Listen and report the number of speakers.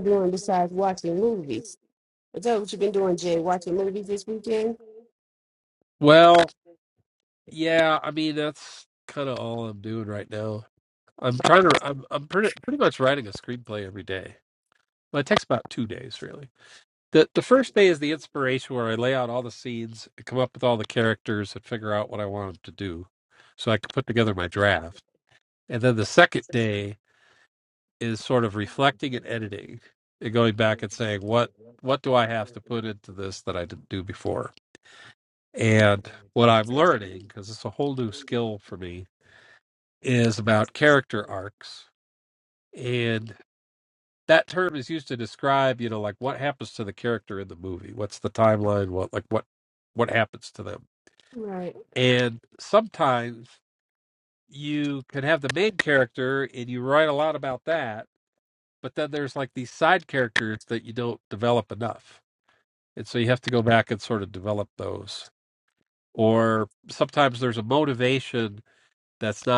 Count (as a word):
two